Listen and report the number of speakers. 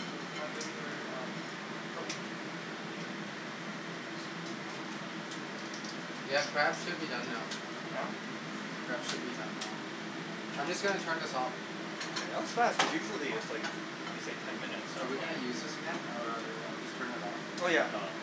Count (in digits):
2